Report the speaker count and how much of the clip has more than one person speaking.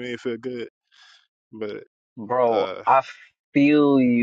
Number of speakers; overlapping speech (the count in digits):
2, about 9%